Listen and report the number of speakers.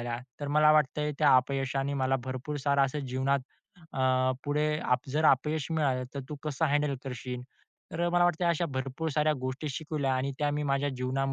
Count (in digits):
1